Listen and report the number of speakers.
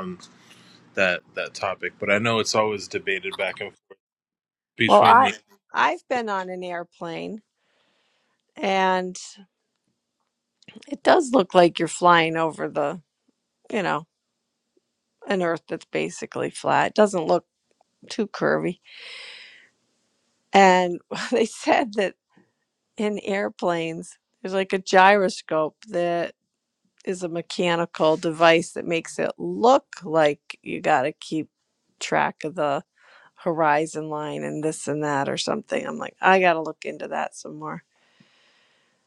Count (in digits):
2